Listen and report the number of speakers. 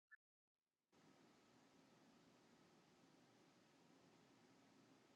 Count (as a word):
zero